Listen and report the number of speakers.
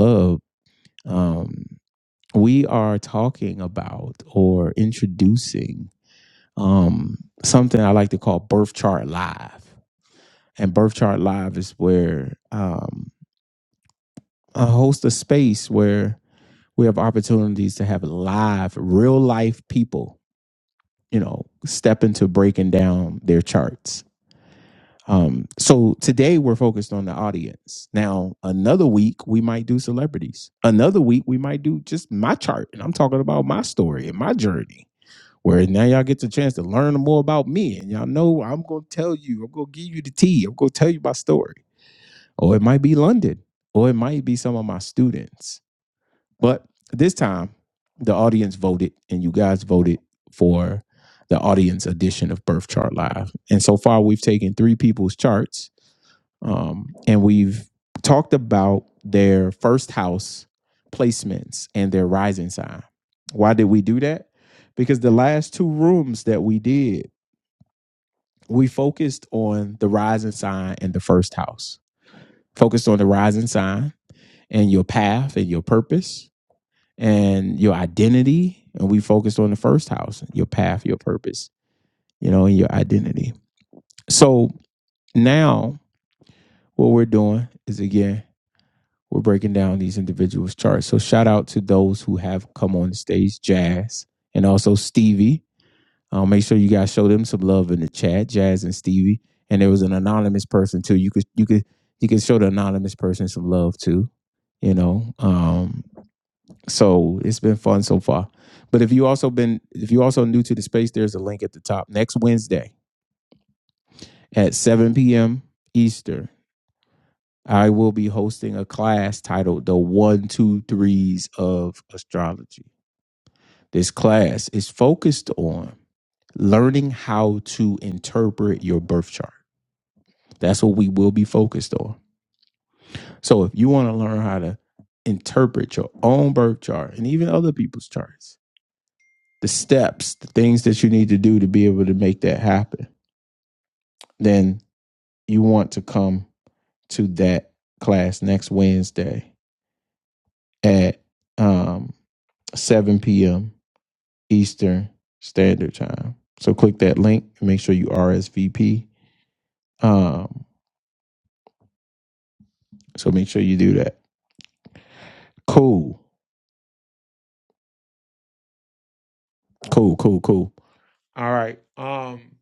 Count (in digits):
1